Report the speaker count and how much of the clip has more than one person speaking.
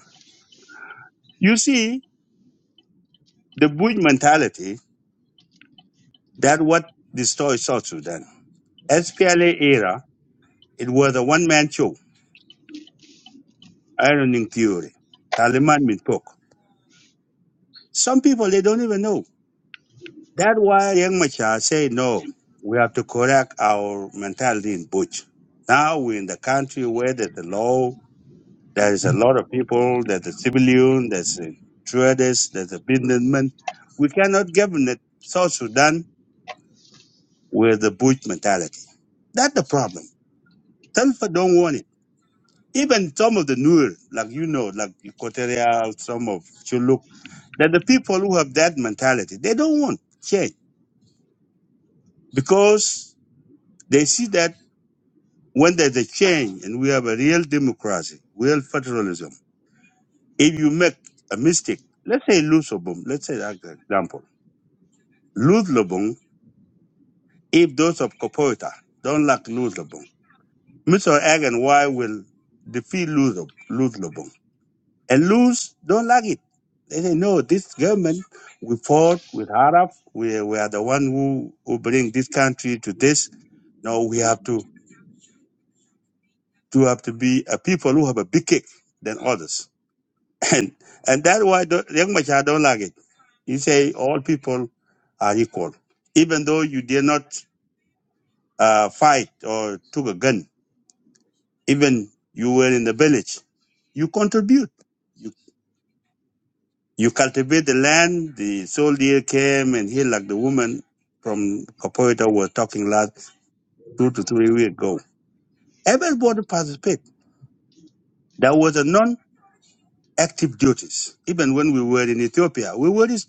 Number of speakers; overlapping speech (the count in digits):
1, no overlap